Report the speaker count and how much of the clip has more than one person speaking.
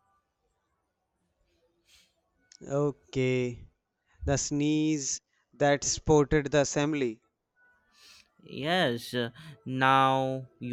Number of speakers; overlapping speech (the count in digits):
2, no overlap